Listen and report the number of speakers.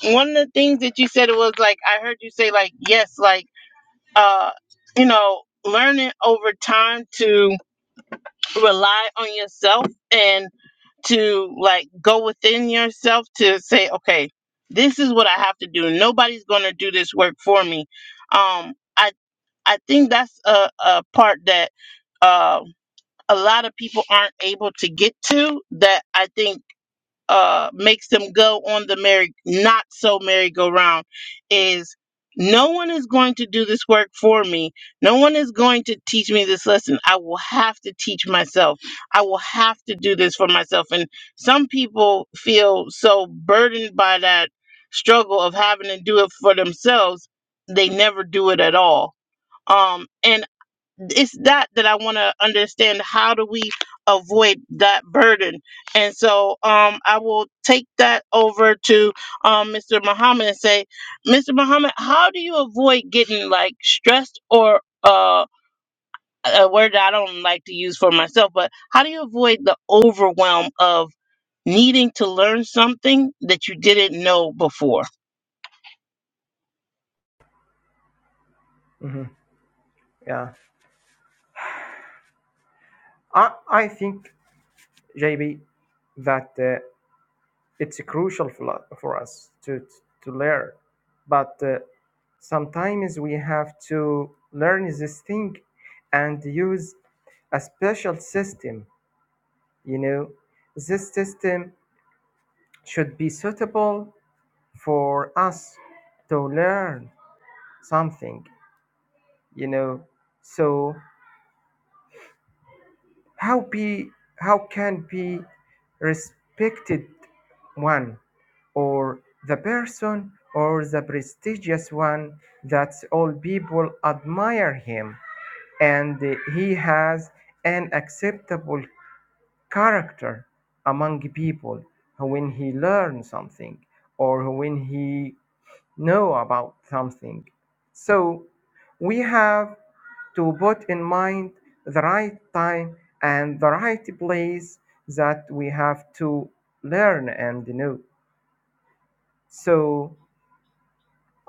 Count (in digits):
2